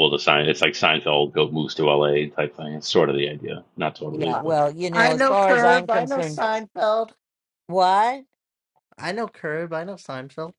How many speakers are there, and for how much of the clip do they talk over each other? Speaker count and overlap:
3, about 18%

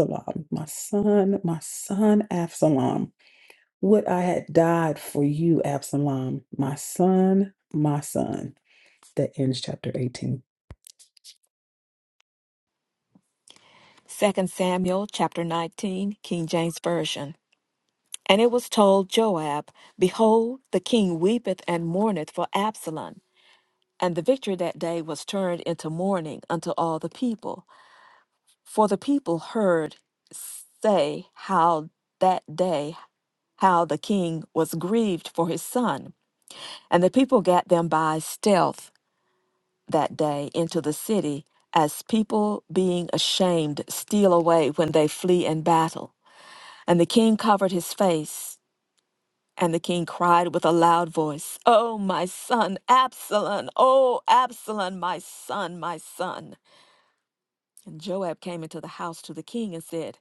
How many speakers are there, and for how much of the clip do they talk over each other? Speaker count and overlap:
2, no overlap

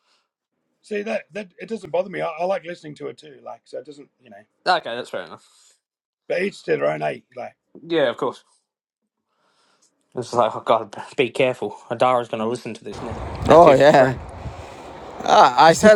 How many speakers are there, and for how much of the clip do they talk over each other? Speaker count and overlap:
3, about 4%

